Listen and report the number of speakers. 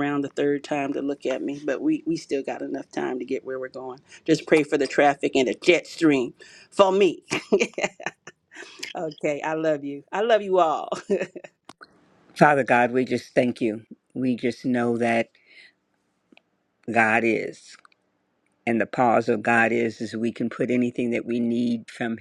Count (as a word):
two